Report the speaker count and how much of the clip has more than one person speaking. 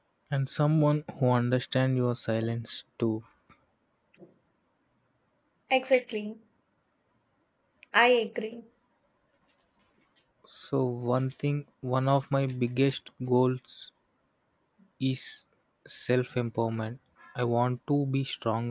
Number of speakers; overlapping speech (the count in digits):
2, no overlap